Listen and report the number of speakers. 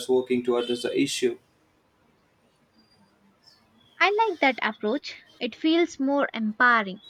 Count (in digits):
2